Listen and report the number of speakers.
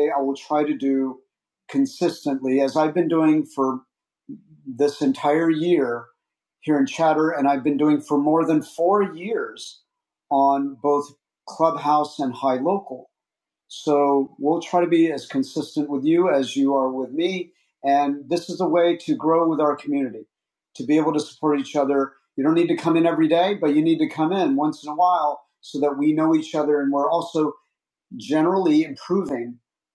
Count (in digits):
1